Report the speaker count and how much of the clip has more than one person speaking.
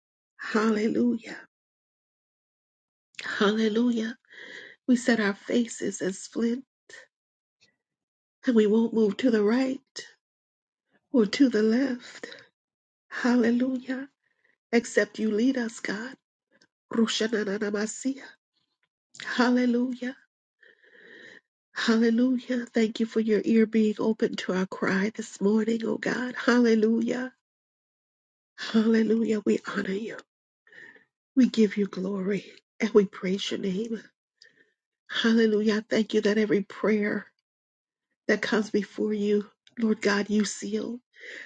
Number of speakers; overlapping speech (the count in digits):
1, no overlap